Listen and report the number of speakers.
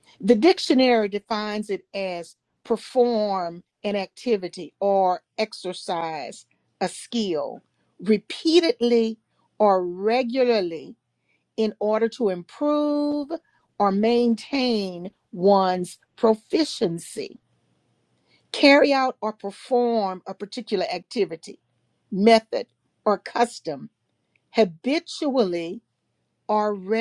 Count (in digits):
1